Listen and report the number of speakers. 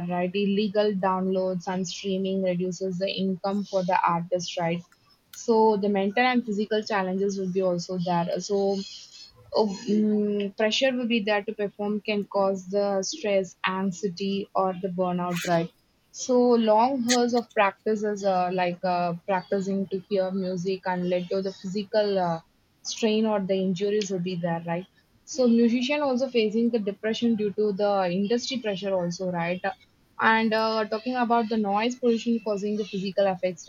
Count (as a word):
one